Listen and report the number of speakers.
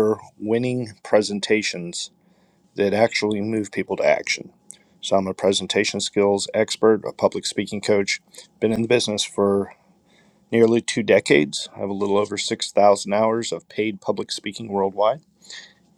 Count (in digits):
1